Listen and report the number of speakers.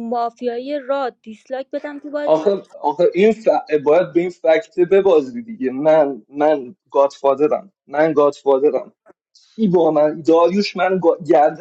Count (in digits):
2